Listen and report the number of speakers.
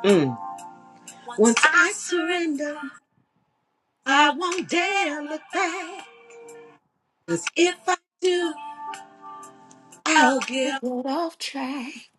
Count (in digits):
2